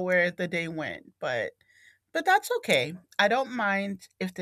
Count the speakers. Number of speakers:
1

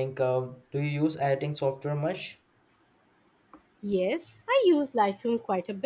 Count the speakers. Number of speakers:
2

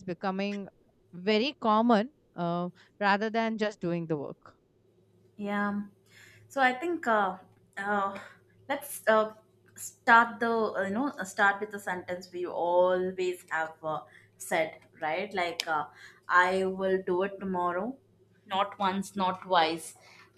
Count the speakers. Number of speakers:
2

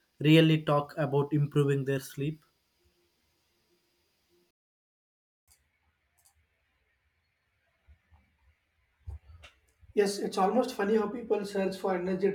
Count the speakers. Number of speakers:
2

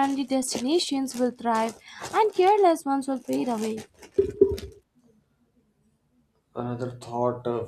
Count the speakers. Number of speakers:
2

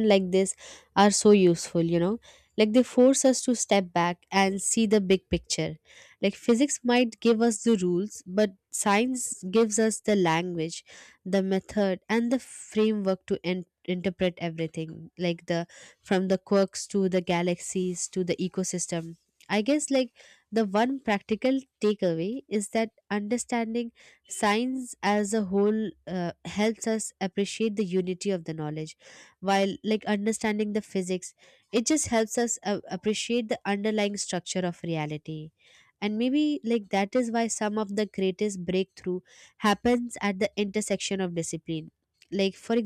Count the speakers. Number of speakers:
1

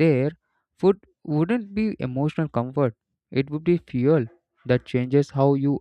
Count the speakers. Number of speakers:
1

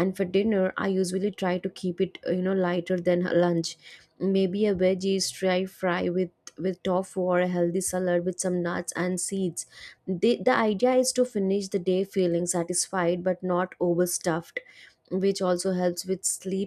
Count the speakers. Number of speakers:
1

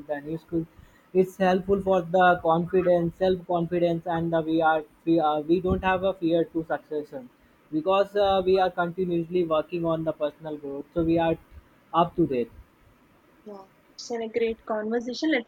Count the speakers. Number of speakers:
2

